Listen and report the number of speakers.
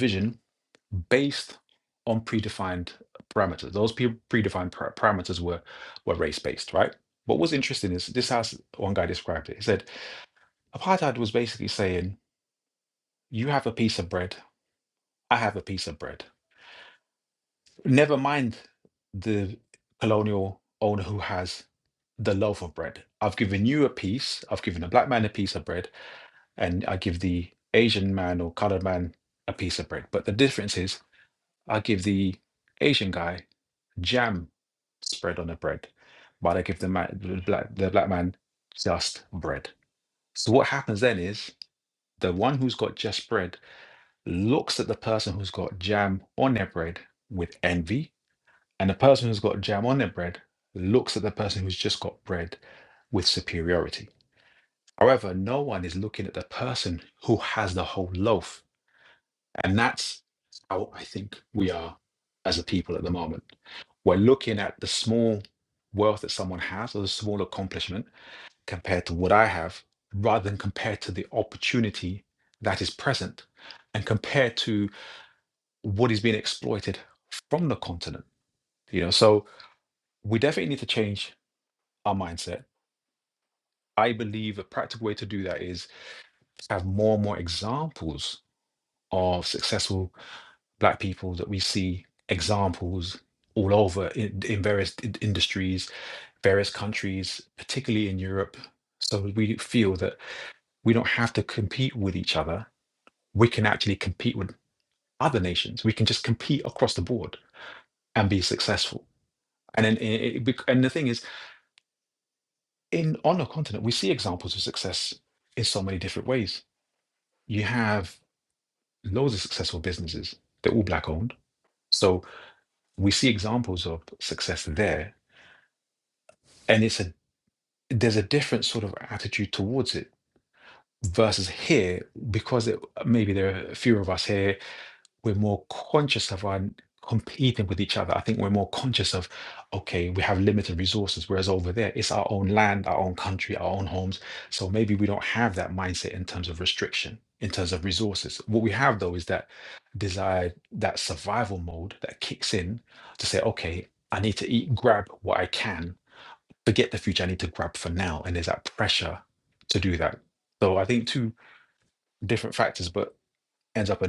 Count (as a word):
one